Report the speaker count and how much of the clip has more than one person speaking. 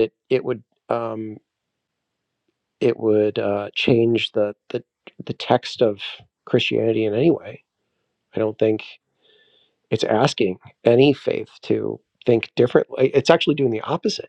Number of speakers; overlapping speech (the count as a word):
one, no overlap